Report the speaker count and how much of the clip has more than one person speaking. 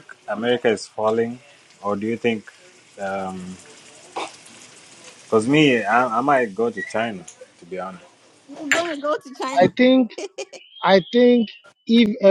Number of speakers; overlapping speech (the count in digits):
3, about 1%